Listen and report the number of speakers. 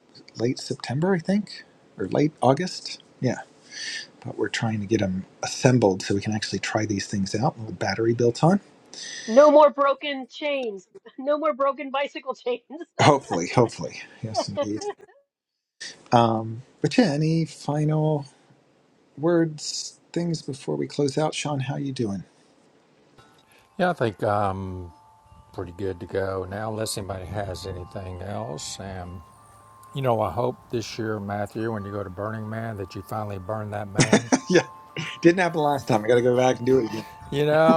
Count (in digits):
3